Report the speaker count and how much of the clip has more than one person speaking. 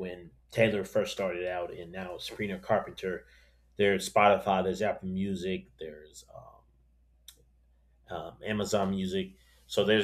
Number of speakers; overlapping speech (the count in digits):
1, no overlap